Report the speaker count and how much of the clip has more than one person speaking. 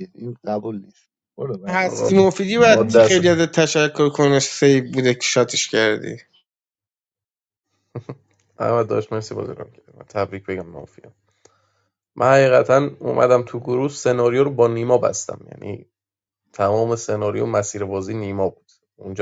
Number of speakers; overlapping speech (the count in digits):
3, about 6%